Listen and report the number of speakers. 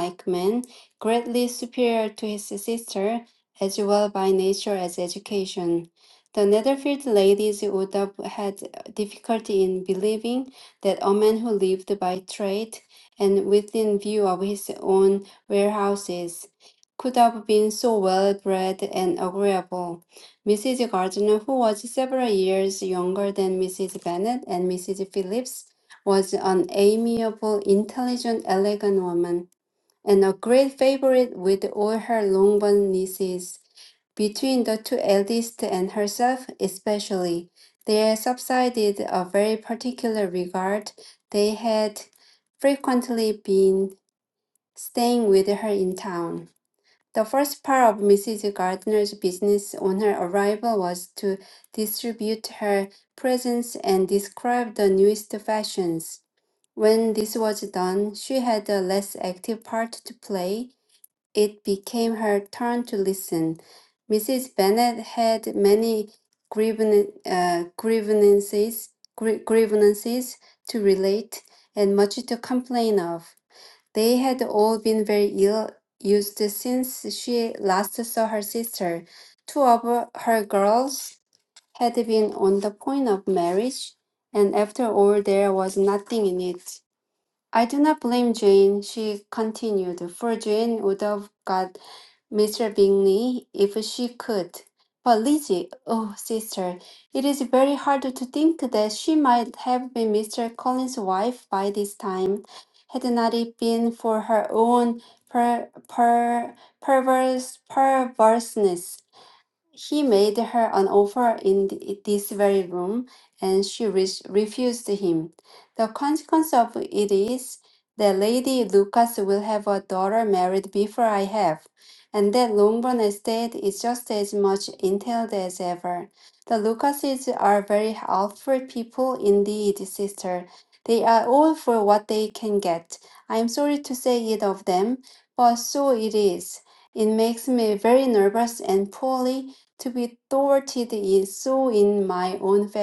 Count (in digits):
1